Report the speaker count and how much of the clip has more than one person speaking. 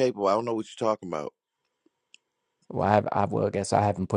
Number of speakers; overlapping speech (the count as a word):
two, no overlap